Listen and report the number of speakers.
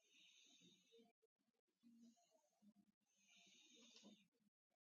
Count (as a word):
zero